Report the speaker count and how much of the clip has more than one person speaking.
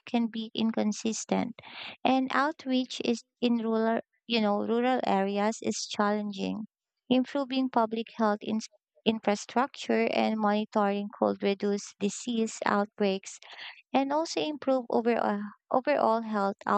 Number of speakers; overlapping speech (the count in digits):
1, no overlap